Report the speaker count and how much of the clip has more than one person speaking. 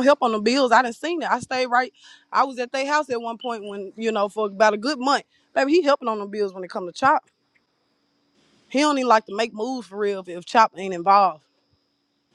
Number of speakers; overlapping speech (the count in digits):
1, no overlap